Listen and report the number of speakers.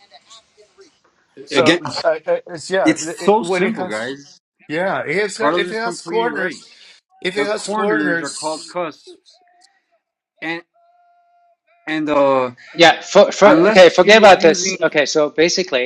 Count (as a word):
three